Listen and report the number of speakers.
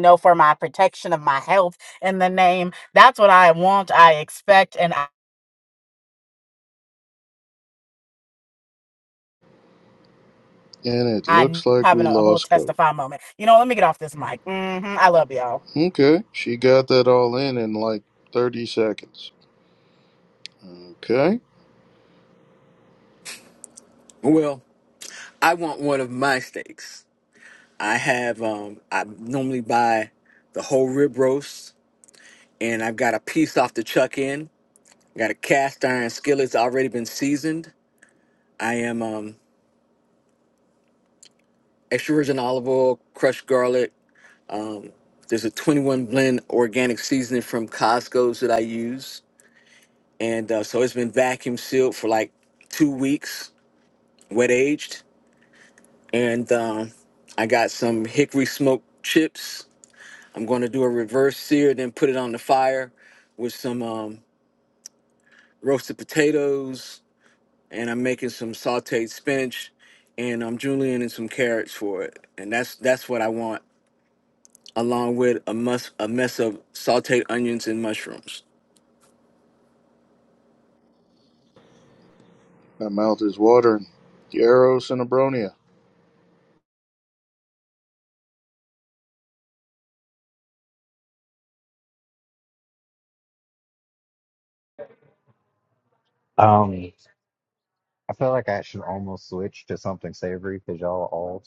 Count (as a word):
four